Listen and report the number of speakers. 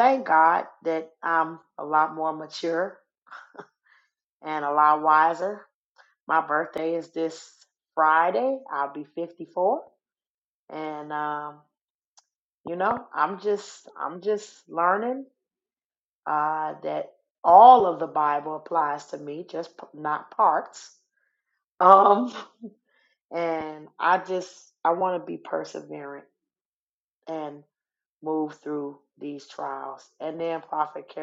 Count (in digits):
1